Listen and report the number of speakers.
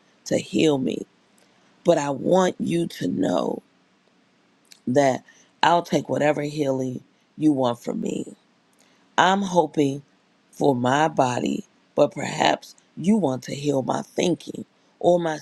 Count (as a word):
one